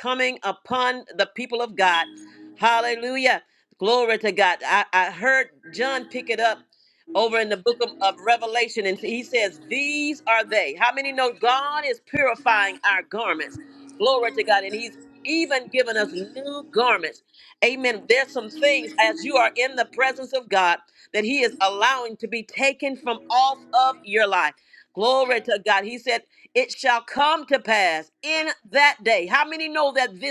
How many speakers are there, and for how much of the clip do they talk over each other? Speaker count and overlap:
1, no overlap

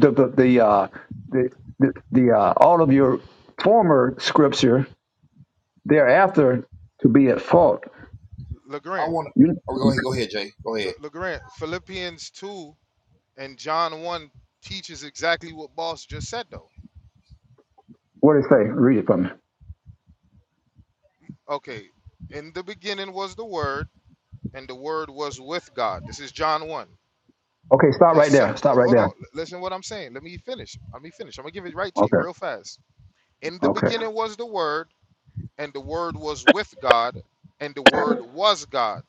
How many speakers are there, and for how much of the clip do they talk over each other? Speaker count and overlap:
3, about 5%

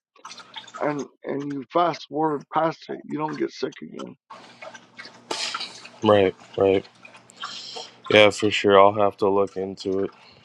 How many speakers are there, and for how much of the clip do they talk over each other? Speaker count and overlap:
2, no overlap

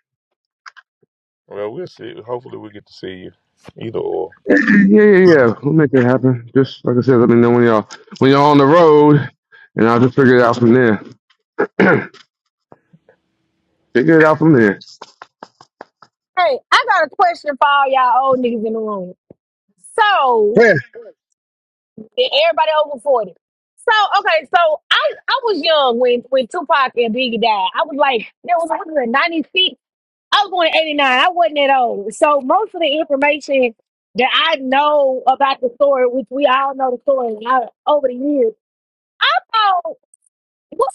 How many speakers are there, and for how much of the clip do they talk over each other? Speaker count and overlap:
3, under 1%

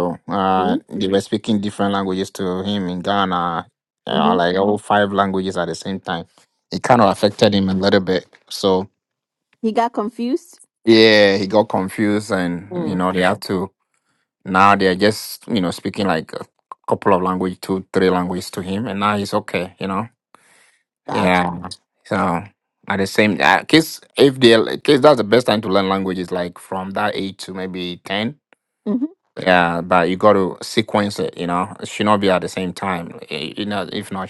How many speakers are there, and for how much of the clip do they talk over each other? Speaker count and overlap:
2, about 3%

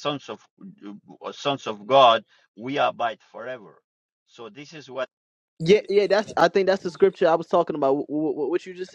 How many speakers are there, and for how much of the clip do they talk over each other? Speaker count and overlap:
2, no overlap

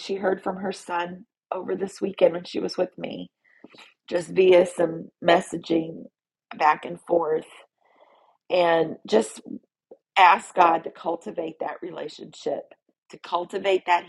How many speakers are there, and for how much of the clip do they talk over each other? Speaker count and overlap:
1, no overlap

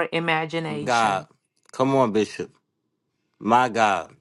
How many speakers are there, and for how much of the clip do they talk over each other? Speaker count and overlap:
2, about 9%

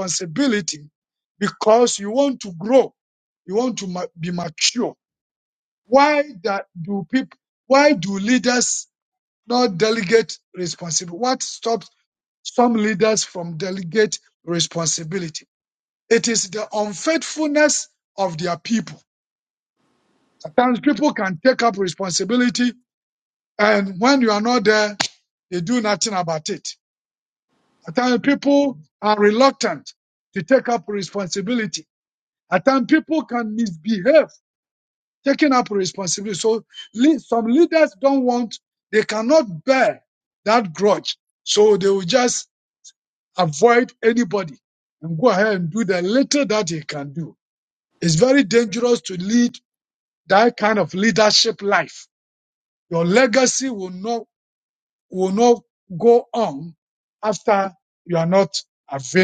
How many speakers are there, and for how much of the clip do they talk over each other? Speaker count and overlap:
1, no overlap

